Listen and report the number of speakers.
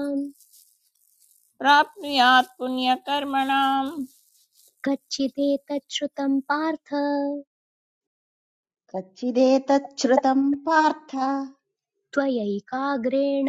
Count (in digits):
3